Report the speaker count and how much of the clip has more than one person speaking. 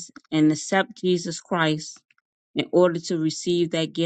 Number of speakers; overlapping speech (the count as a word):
one, no overlap